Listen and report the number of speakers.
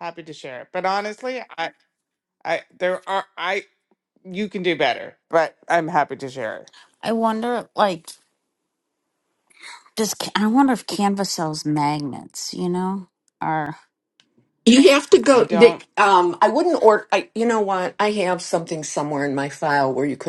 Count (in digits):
3